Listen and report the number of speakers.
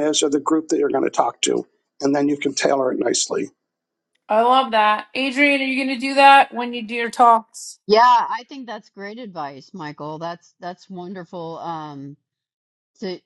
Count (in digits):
3